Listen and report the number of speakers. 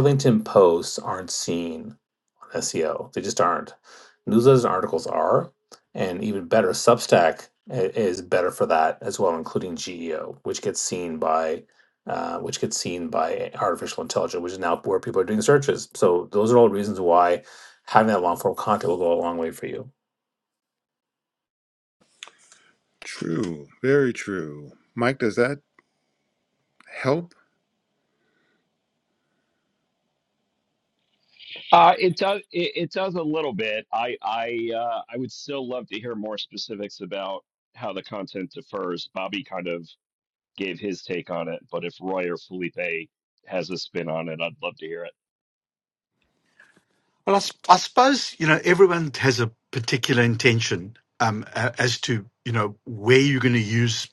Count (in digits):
4